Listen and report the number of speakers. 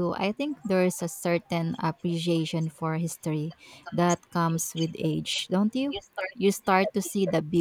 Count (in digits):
1